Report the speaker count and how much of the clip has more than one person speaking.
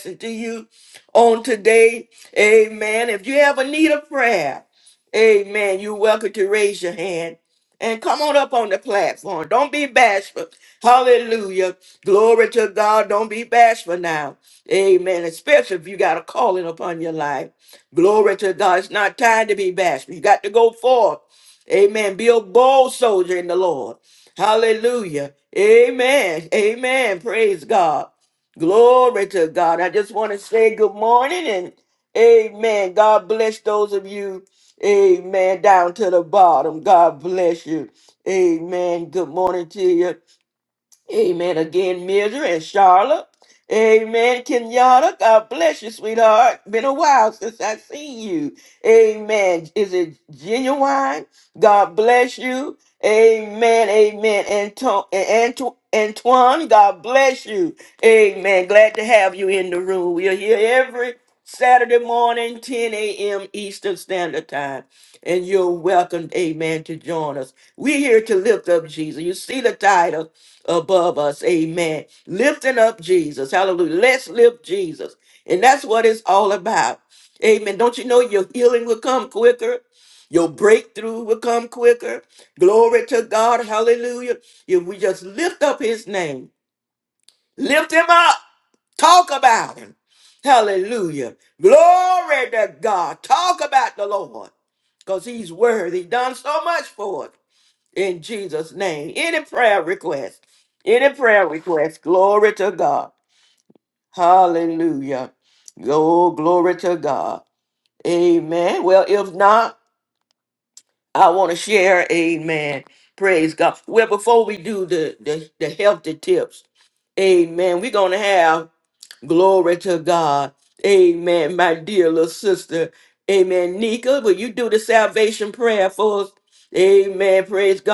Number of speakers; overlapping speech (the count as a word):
one, no overlap